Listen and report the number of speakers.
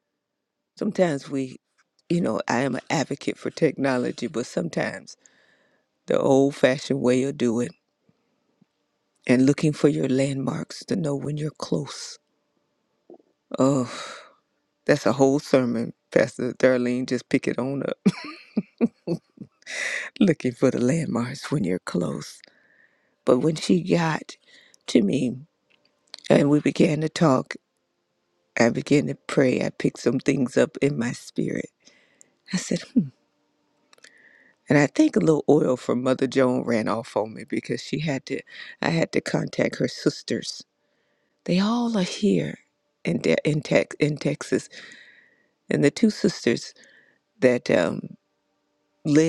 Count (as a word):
one